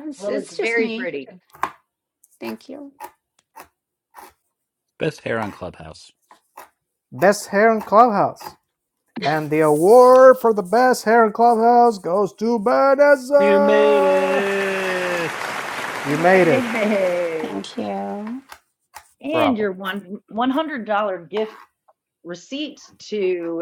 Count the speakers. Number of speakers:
4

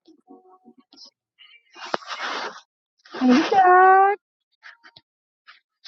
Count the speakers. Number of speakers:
1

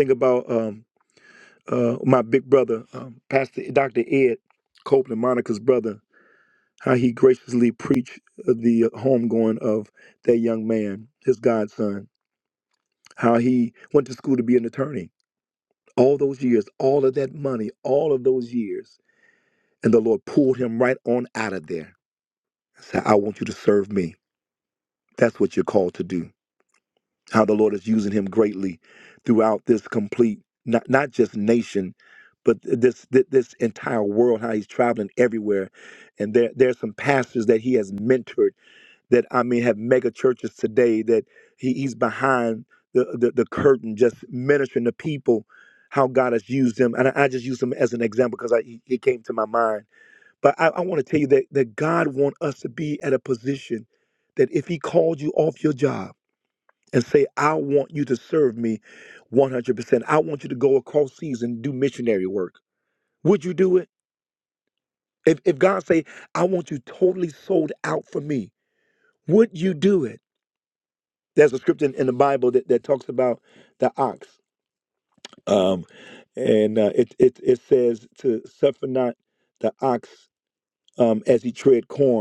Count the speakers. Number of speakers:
1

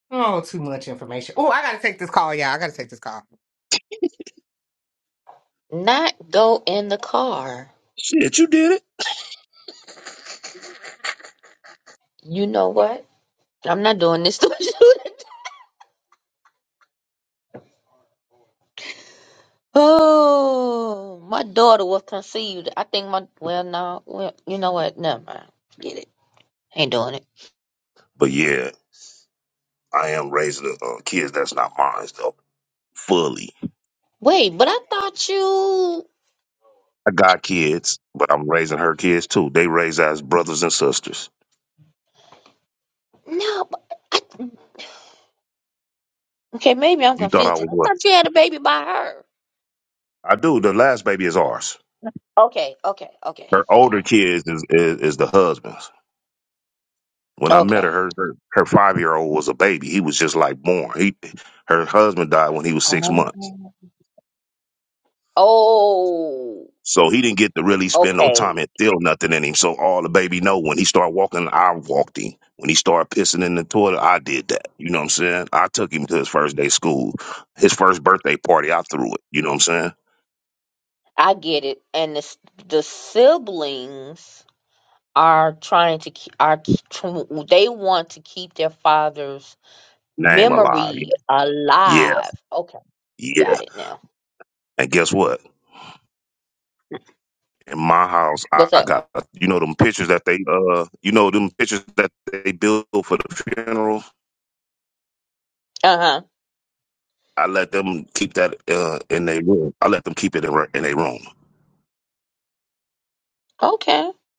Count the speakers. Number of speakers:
3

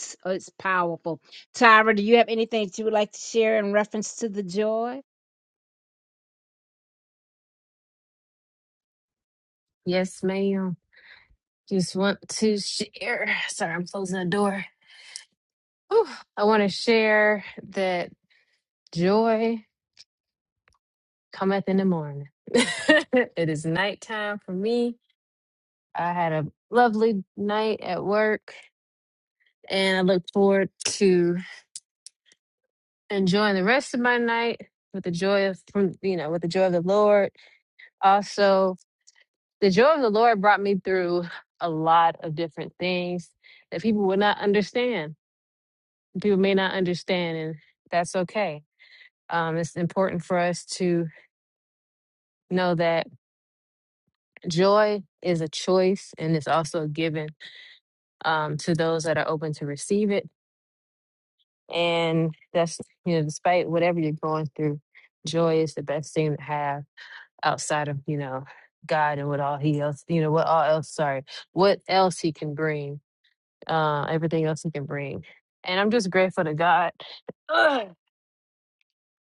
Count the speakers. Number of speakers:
2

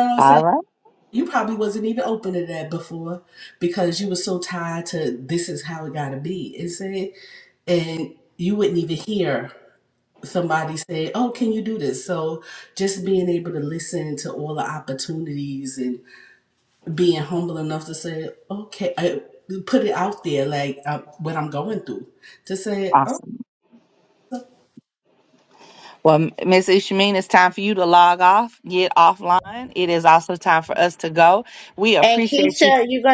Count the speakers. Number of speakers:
3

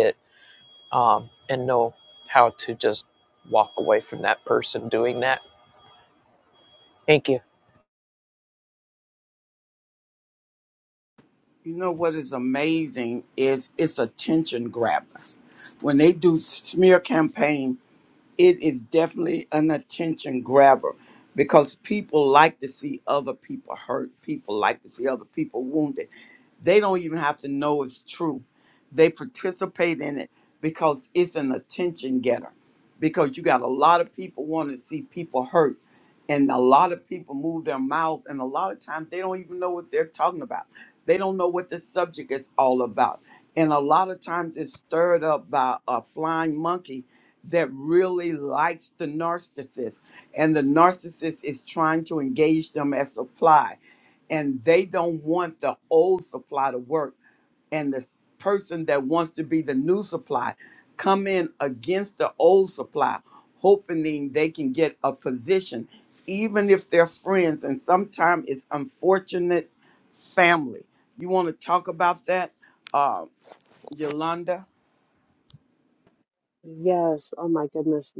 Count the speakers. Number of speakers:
3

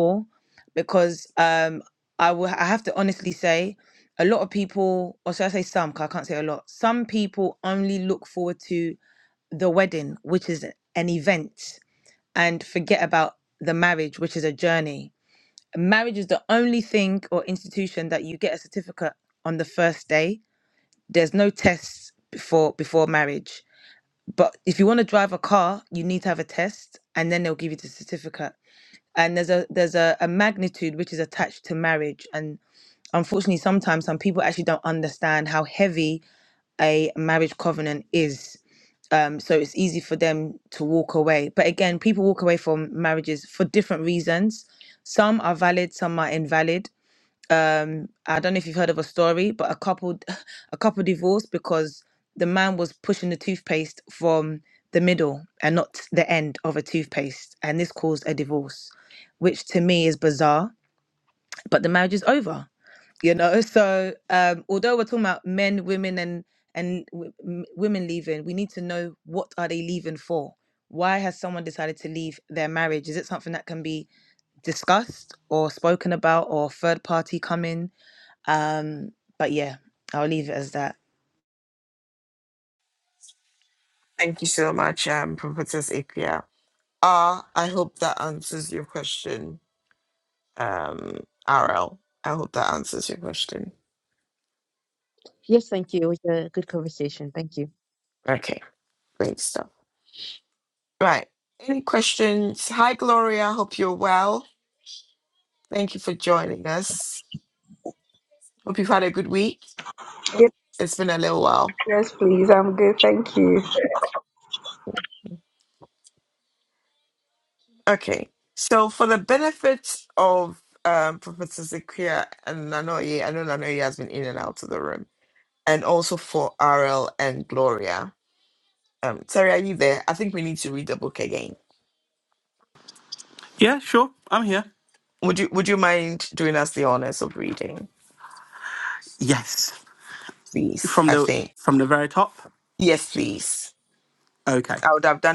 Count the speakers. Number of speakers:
5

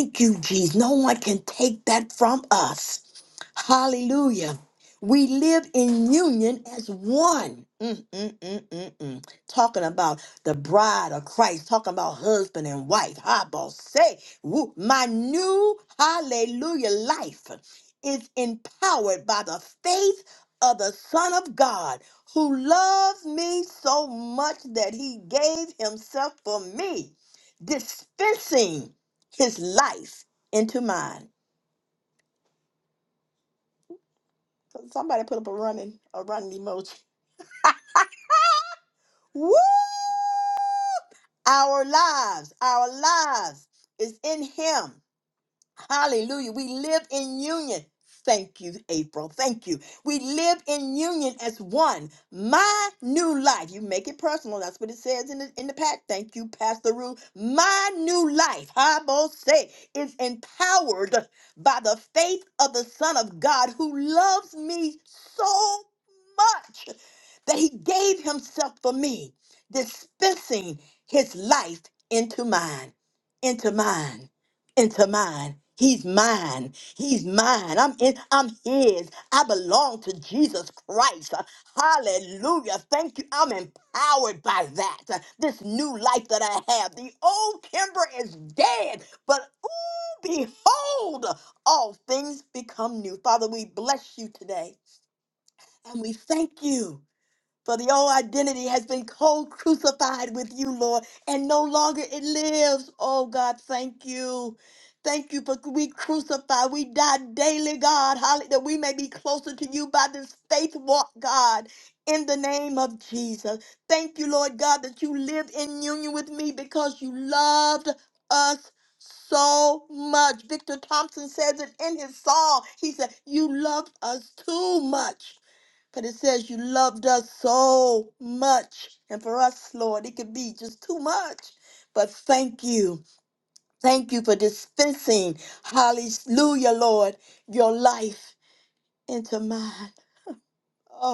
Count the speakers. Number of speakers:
1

